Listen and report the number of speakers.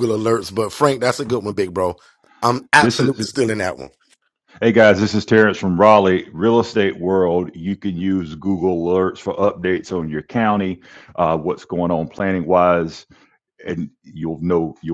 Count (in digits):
2